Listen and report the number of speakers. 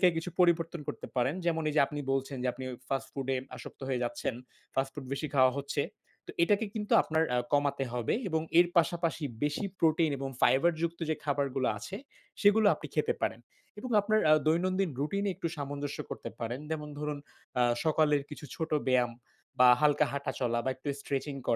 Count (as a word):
one